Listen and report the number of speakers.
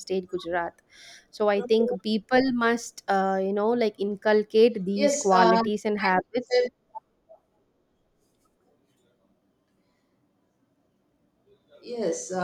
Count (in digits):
2